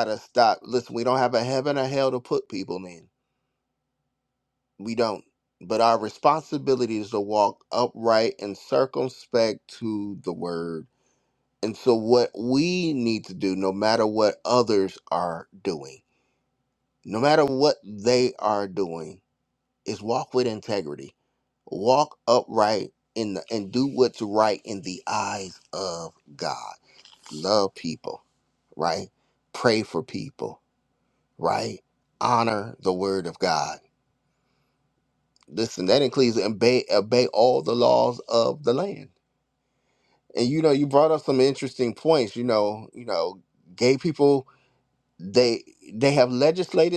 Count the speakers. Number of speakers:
one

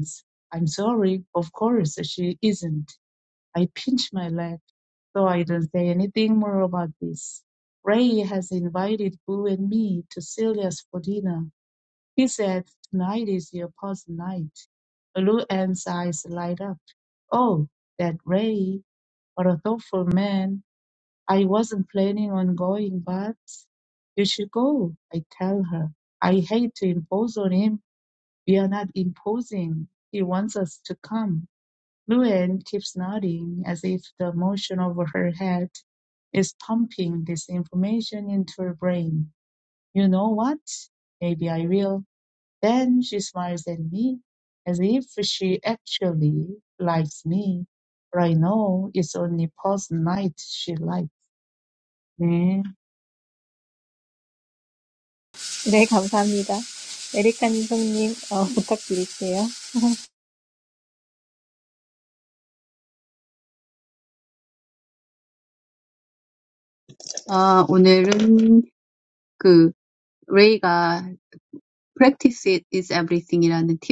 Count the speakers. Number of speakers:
three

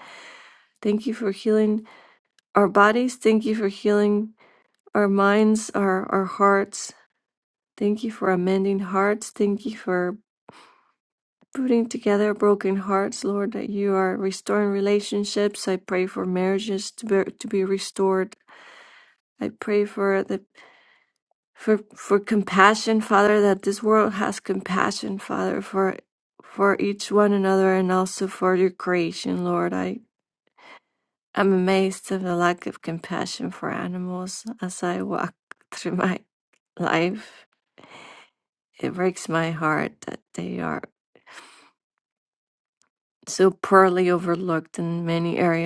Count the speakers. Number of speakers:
one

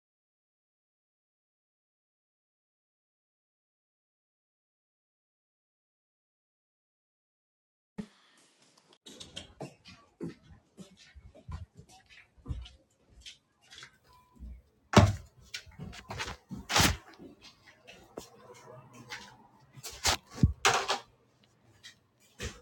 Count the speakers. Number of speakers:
zero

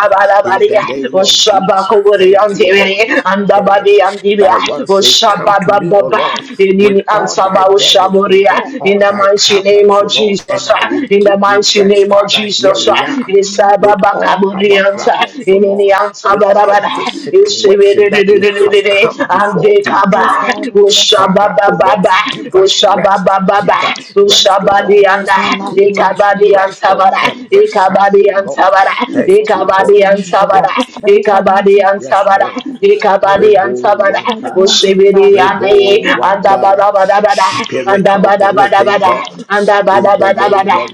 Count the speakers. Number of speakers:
three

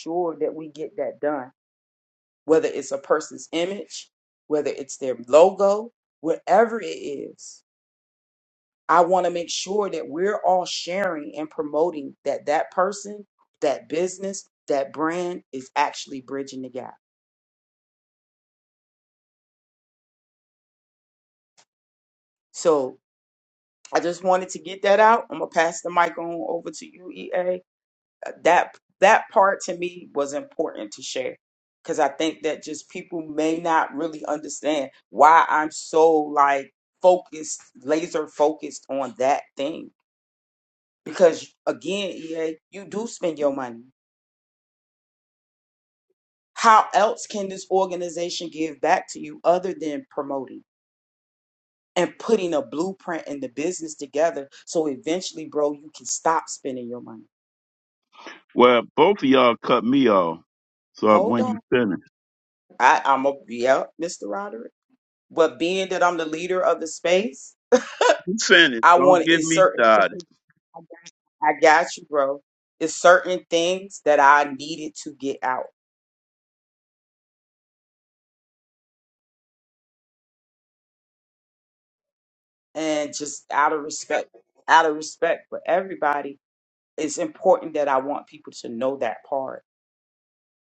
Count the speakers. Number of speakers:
two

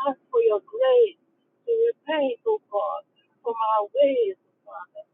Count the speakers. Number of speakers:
one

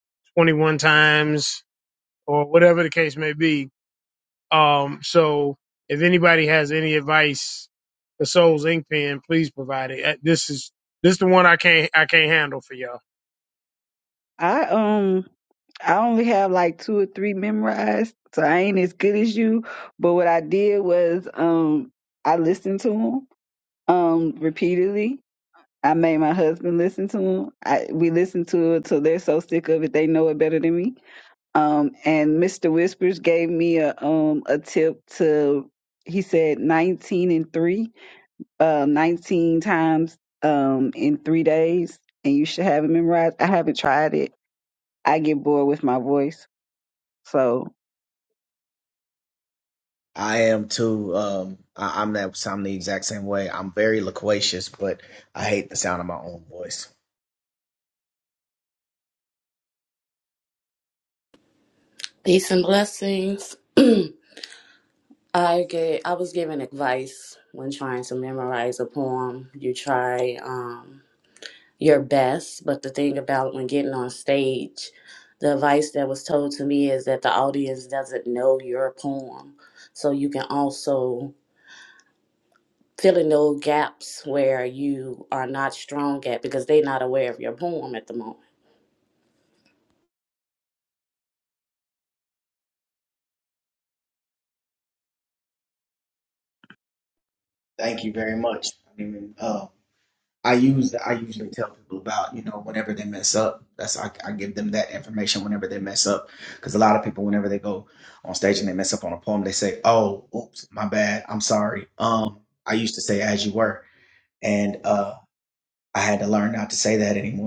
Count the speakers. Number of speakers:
four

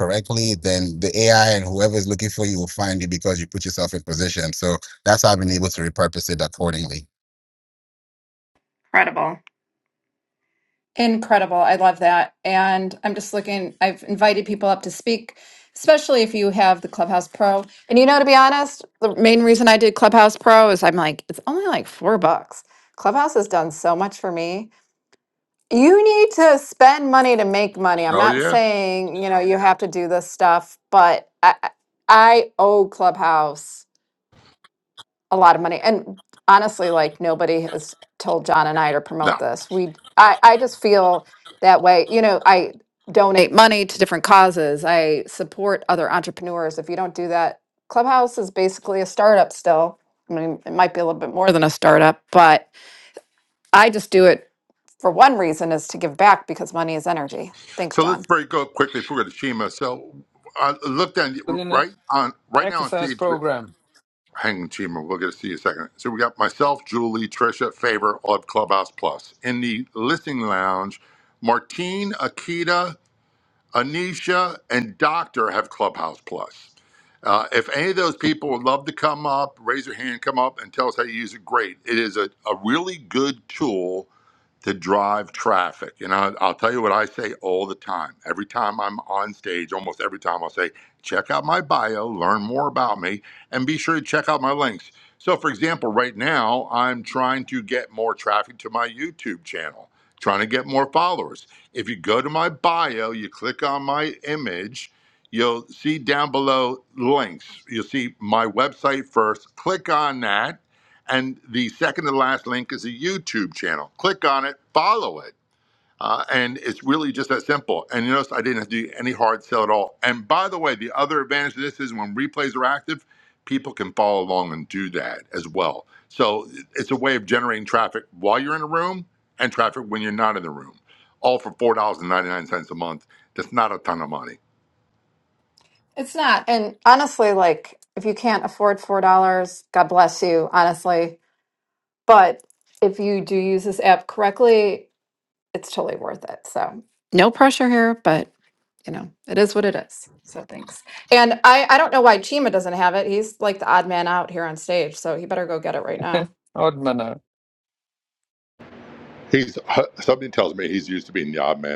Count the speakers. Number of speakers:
four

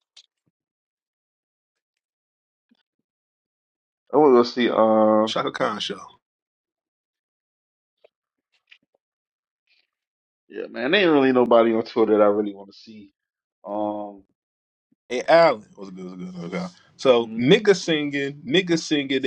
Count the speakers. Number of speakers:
two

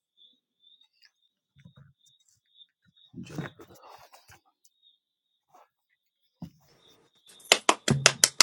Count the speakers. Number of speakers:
zero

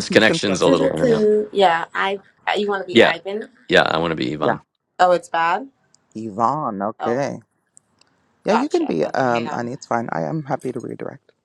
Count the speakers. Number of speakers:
three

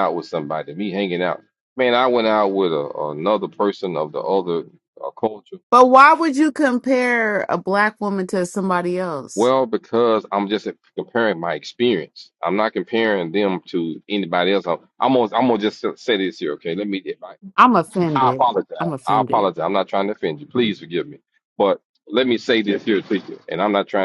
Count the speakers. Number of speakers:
two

